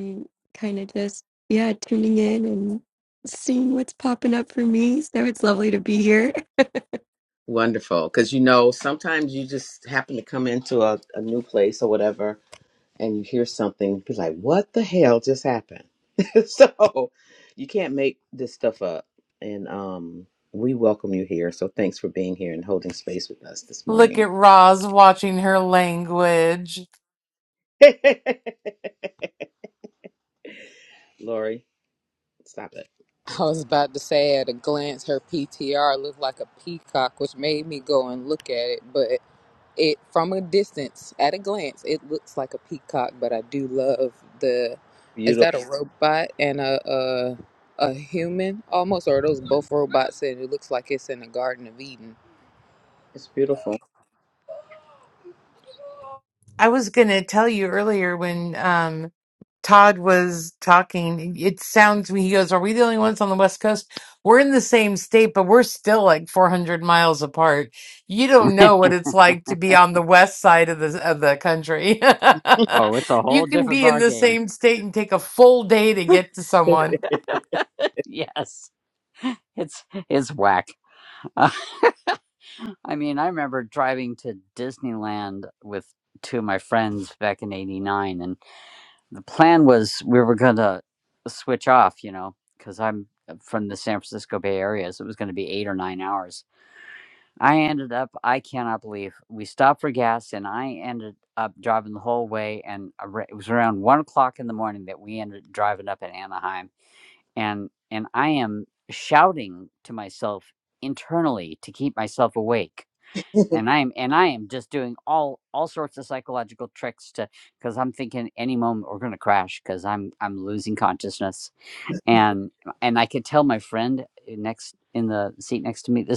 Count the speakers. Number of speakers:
5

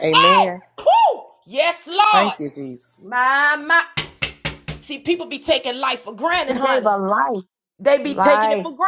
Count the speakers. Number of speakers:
3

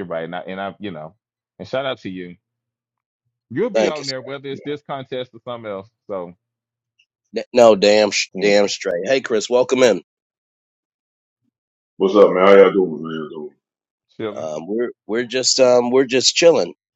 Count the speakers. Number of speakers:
3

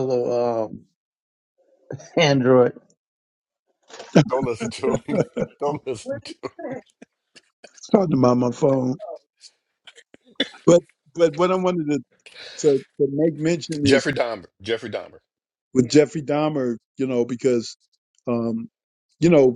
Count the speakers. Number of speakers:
3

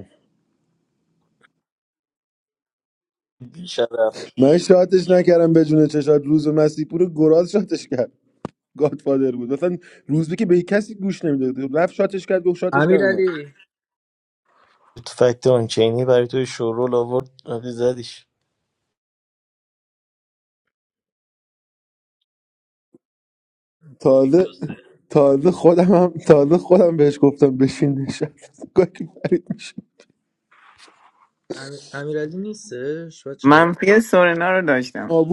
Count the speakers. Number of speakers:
4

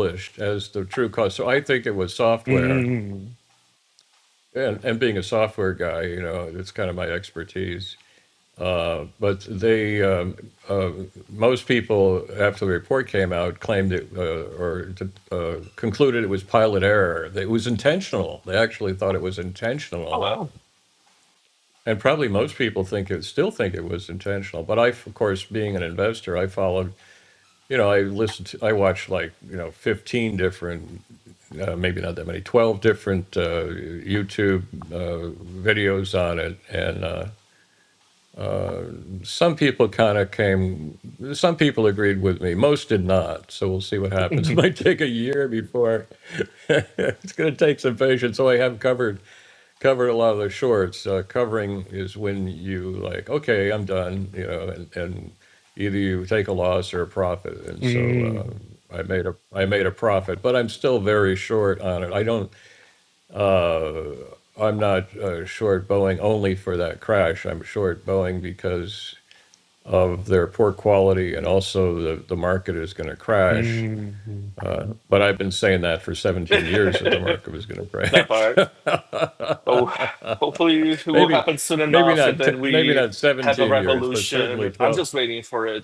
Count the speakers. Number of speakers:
2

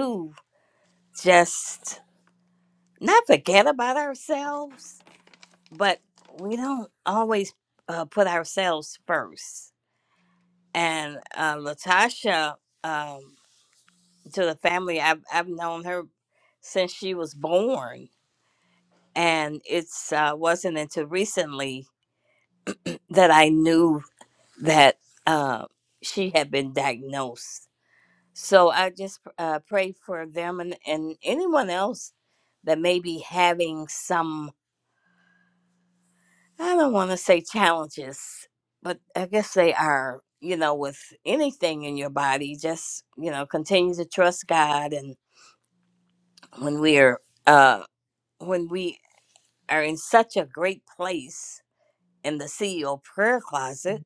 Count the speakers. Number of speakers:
1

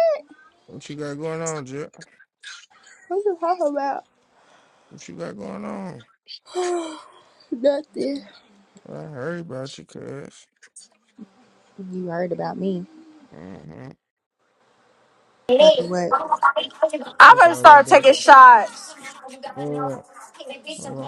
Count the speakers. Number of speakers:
3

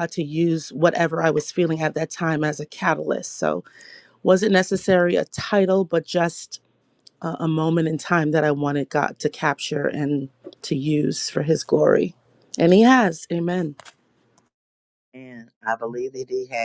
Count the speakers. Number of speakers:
2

